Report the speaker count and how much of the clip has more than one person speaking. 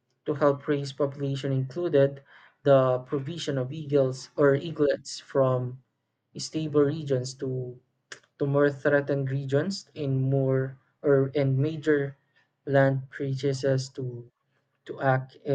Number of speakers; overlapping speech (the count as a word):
one, no overlap